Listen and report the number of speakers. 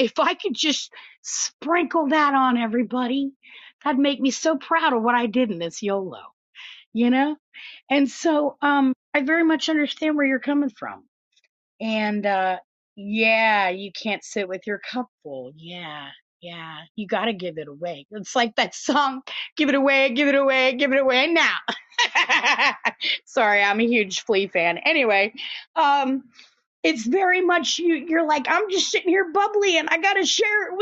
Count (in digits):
1